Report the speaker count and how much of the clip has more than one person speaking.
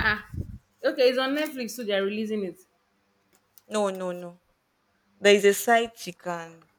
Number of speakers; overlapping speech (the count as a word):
two, no overlap